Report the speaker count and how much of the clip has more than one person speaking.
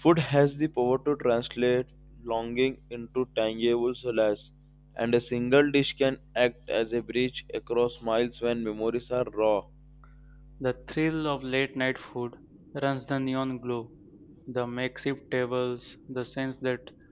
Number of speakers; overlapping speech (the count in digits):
2, no overlap